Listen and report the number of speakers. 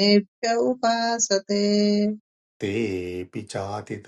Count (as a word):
two